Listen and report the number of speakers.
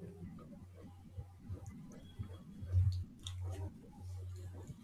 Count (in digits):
0